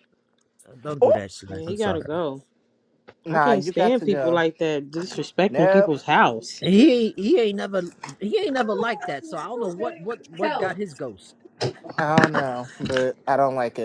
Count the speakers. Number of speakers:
three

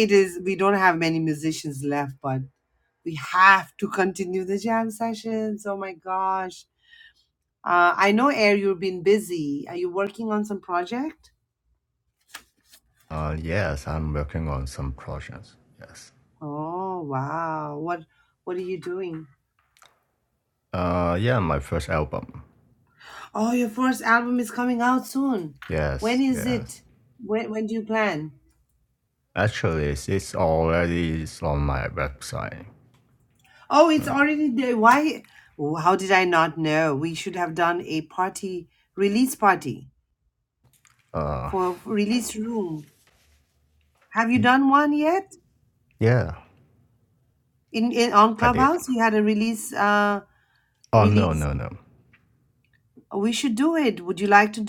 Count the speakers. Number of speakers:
two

